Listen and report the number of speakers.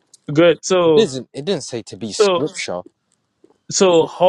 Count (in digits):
2